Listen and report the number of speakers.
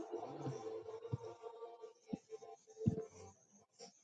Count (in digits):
0